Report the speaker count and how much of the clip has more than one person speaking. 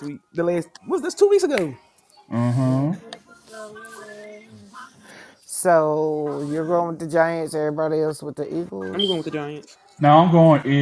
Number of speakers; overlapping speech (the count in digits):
3, about 1%